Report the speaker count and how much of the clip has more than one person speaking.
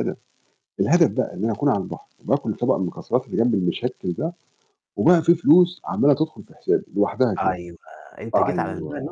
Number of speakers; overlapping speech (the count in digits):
2, about 11%